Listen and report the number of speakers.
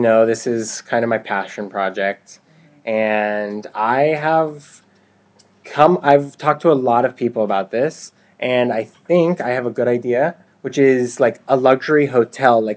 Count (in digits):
1